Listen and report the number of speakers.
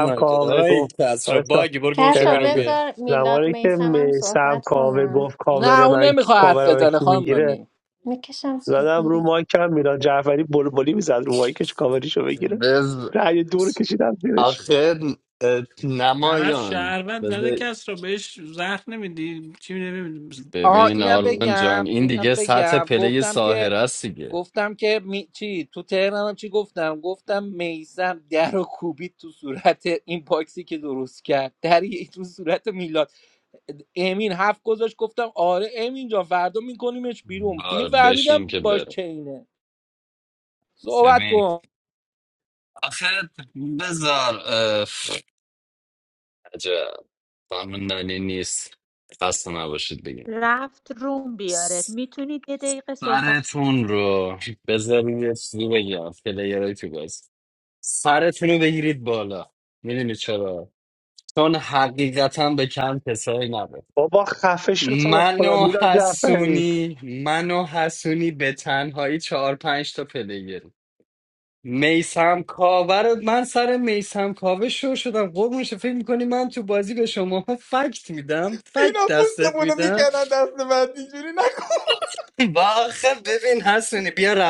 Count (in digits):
7